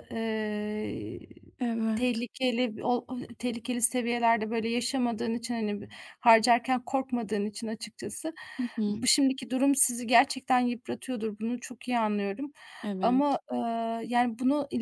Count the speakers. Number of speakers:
two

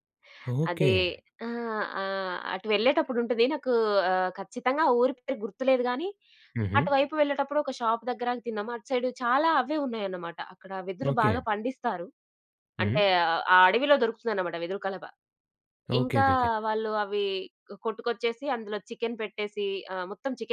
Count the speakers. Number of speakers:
two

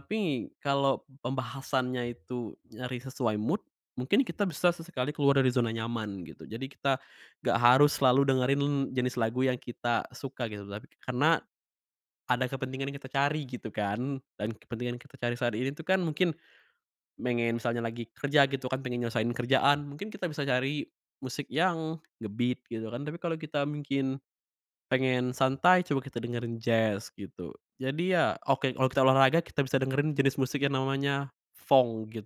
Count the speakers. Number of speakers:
one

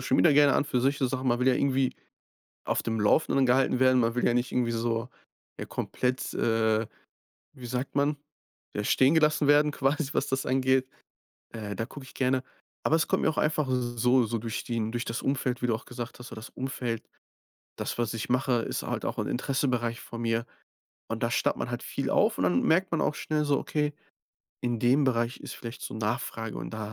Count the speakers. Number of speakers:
one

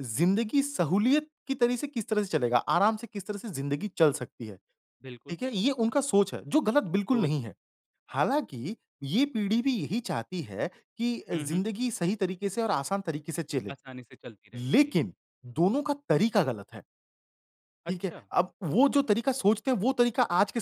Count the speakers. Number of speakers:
two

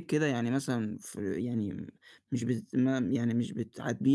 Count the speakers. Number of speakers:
one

